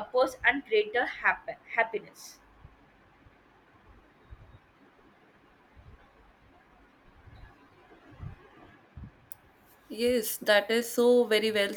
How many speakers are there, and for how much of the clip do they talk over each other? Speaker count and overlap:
two, no overlap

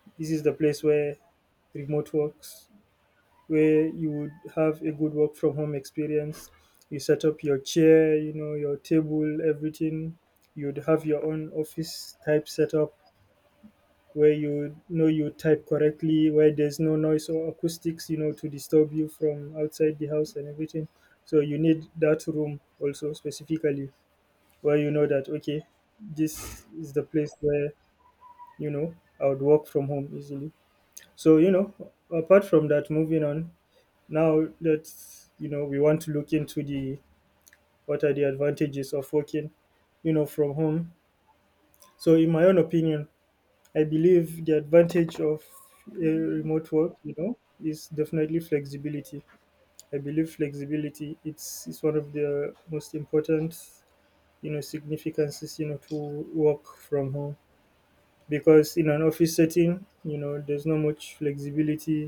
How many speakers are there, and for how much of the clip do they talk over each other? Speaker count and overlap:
one, no overlap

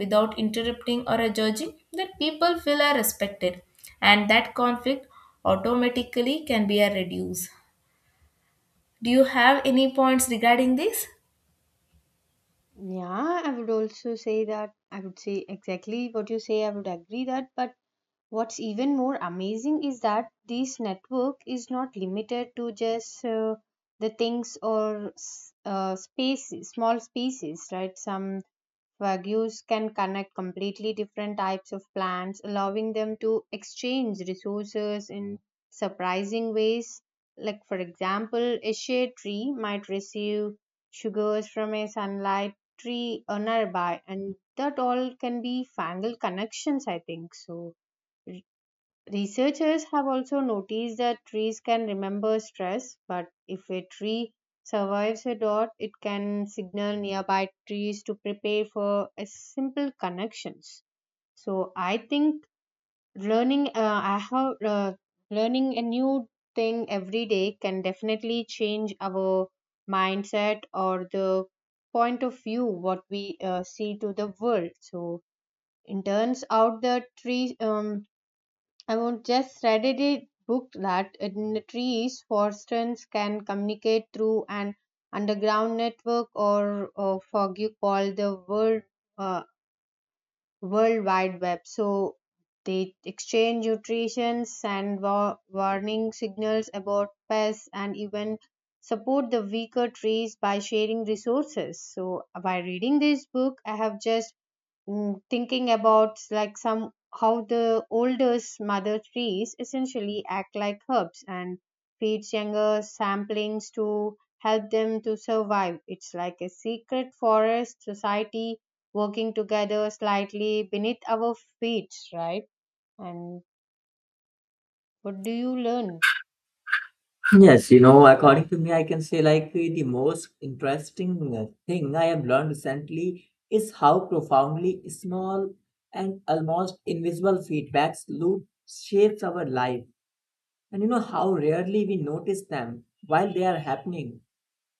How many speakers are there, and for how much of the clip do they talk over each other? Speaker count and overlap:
three, no overlap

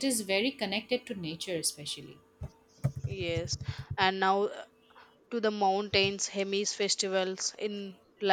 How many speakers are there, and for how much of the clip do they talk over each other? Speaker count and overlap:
two, no overlap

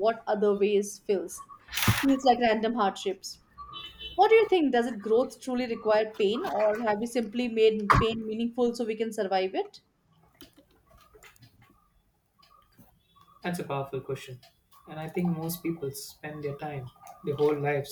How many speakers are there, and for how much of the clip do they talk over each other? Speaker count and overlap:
two, no overlap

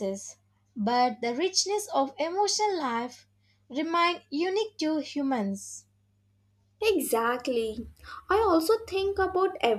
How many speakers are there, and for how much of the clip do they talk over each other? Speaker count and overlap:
two, no overlap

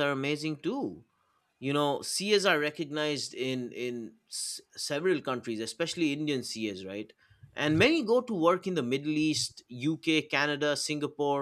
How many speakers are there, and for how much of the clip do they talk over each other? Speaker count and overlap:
one, no overlap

